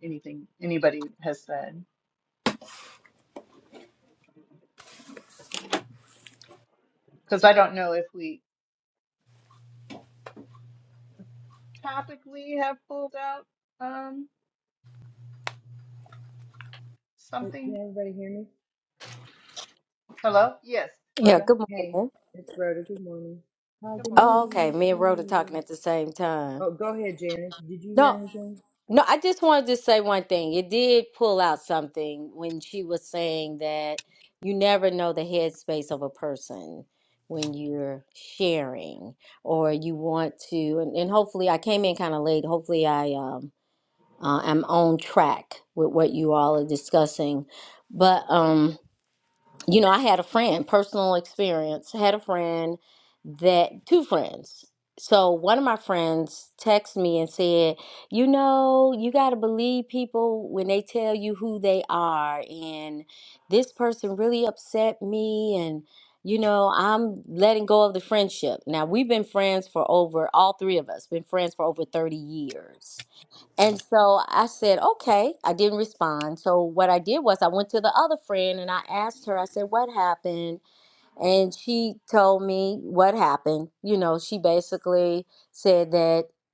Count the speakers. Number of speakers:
3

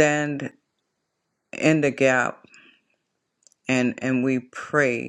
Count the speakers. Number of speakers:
1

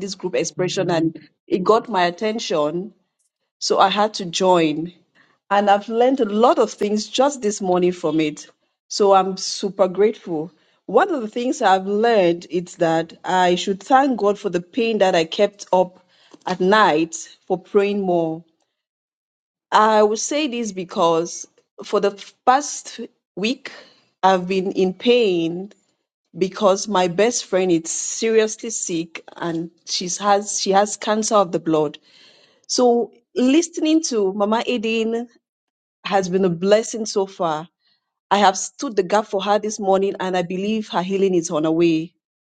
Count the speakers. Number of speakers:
1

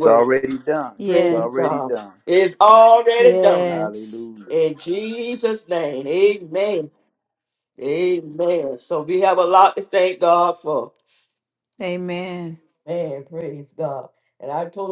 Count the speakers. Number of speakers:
3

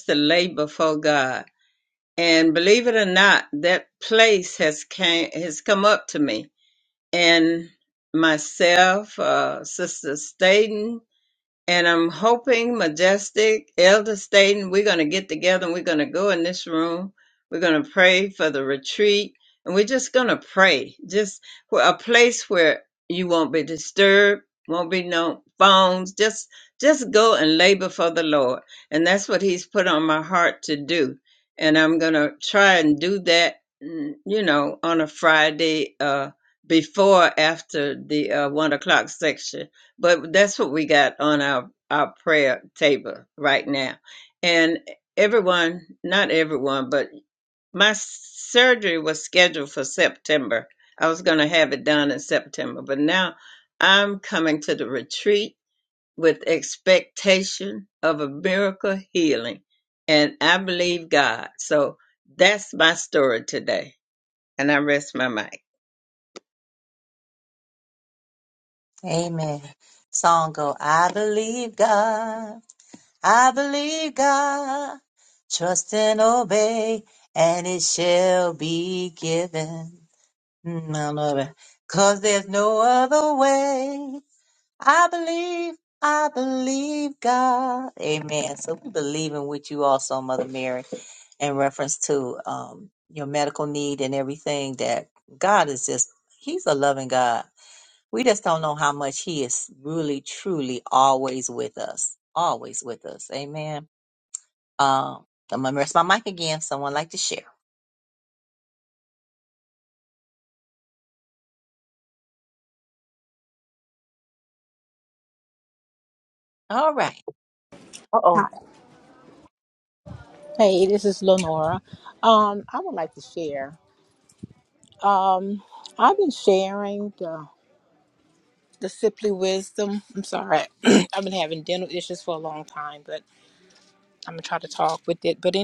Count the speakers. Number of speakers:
3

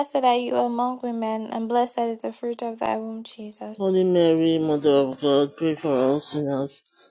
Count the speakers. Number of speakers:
2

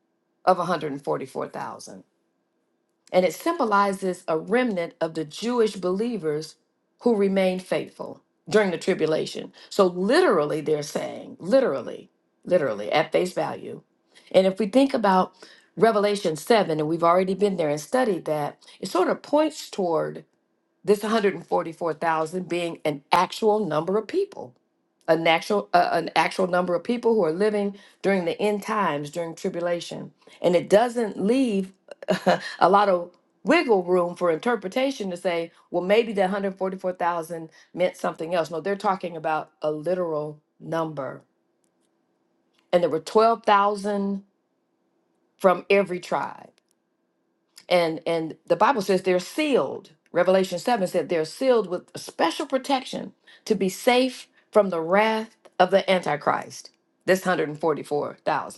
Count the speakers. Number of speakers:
1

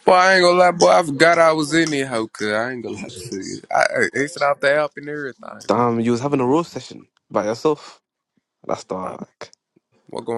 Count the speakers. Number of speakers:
2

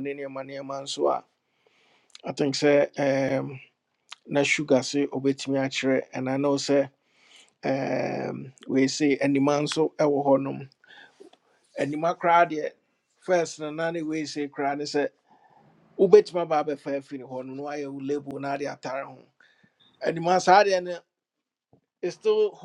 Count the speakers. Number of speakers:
1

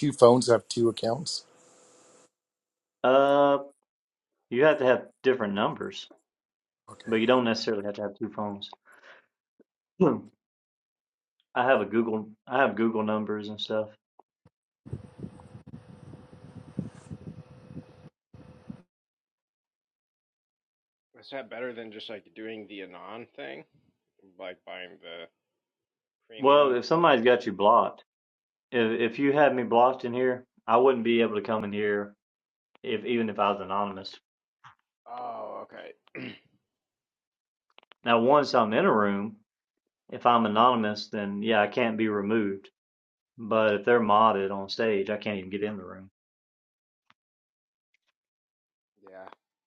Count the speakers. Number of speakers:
3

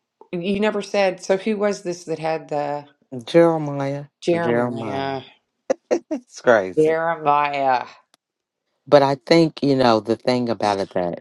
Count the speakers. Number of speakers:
2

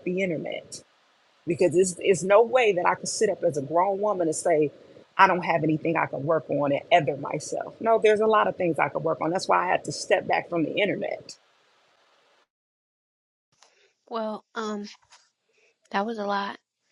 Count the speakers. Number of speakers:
2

